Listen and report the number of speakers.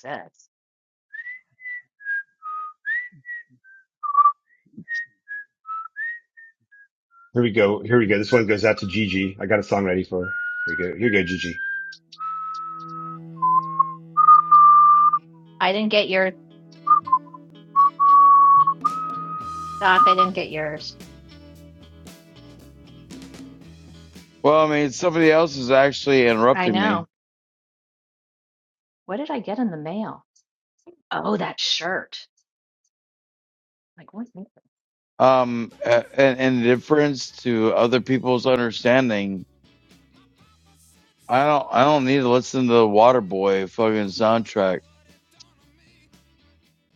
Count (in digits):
3